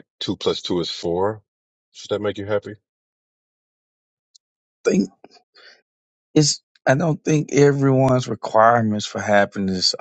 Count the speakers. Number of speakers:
2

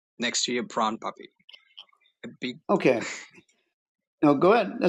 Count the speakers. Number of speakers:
2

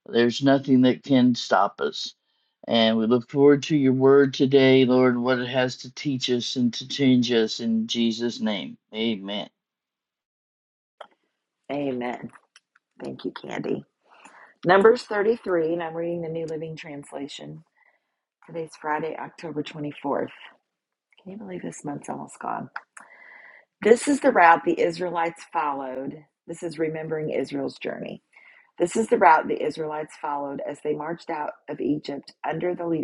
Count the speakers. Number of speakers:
2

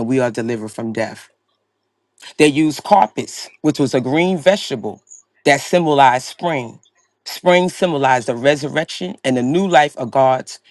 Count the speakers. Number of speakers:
1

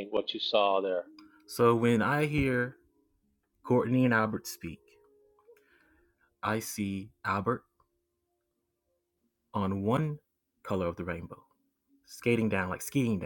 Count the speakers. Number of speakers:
2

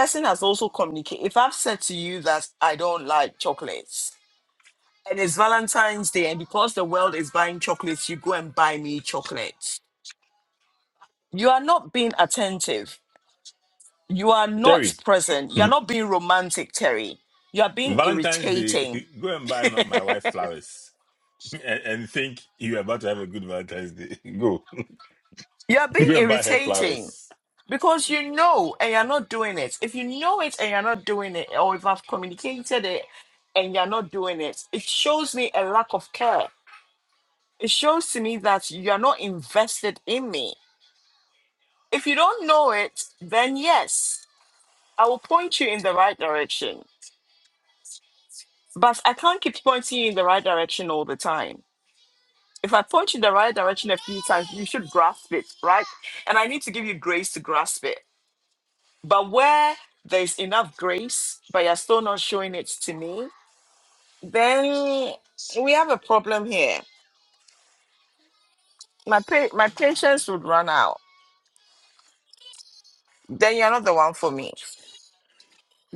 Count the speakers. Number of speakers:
2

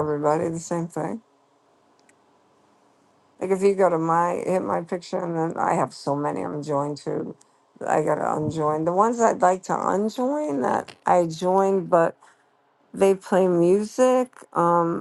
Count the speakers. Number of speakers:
1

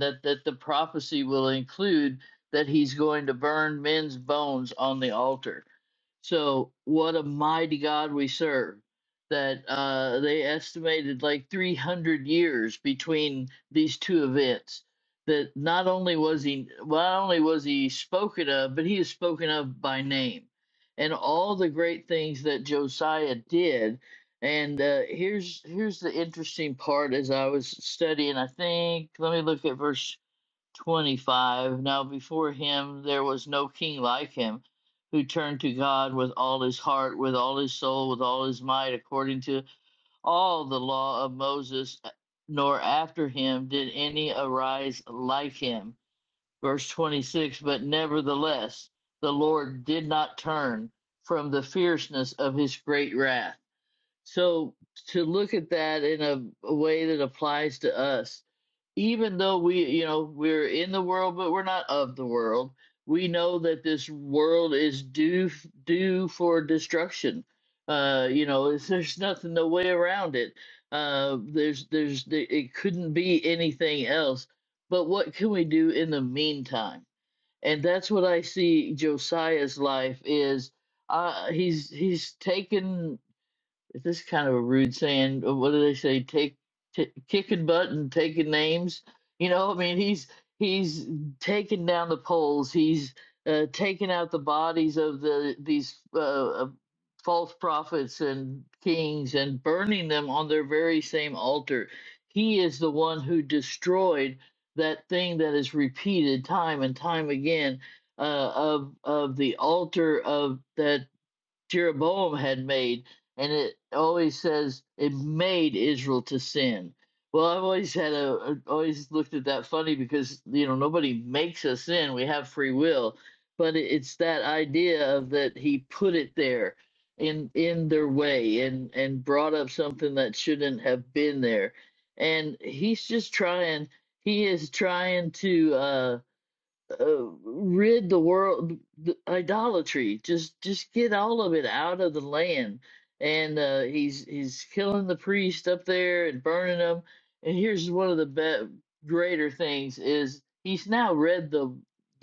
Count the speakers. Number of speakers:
1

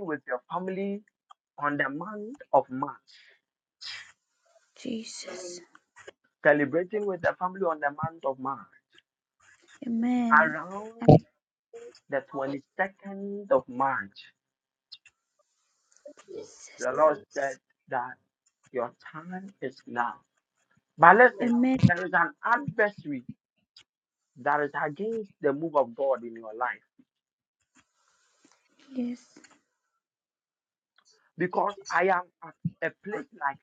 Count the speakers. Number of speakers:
2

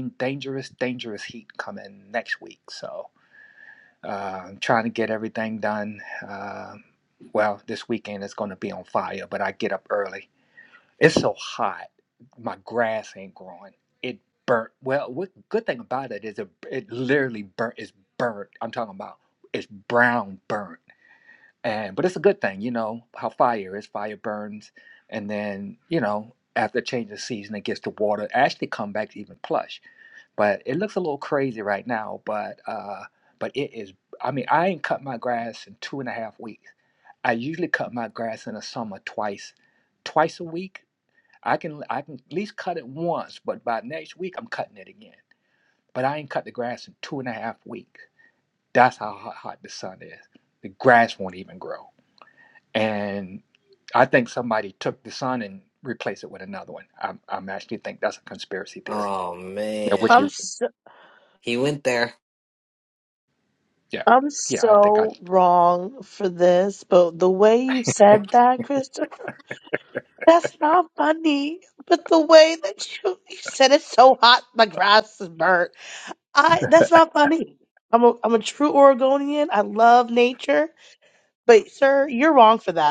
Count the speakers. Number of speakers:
3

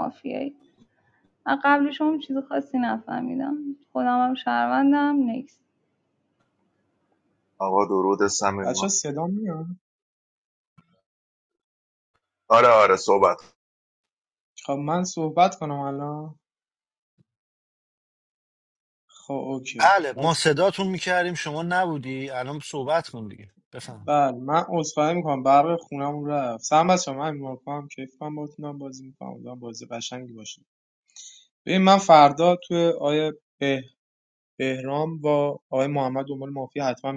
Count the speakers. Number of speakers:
4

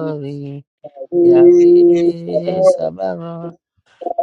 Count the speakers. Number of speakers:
2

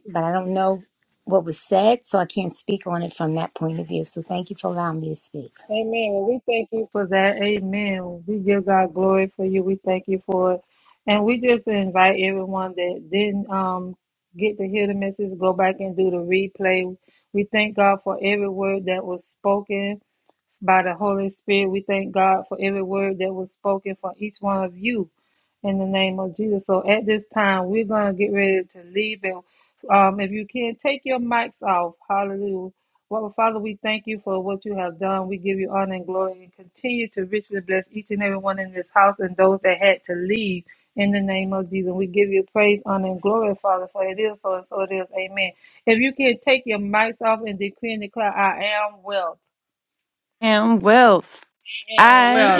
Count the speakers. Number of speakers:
3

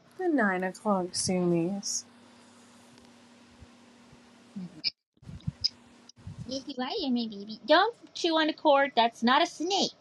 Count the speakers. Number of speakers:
2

